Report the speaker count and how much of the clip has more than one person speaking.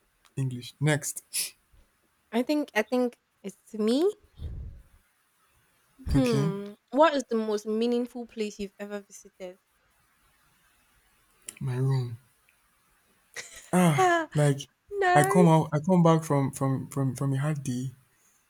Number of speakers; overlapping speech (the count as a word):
two, about 6%